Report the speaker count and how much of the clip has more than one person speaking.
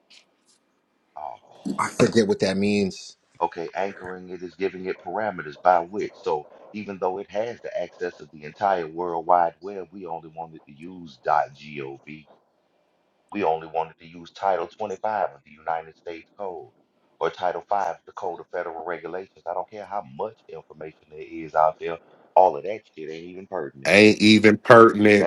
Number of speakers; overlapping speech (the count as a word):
three, about 2%